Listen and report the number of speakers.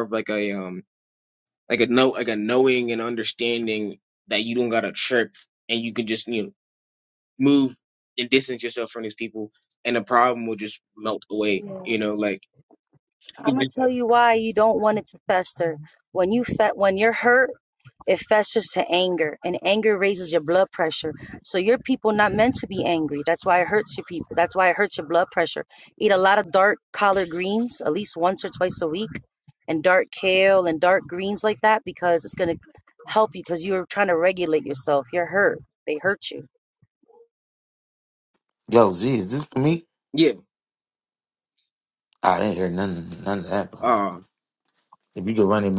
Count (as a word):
three